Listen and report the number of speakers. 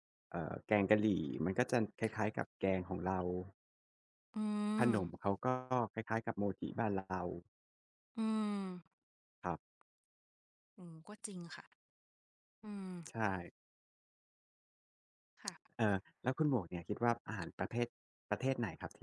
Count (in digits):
2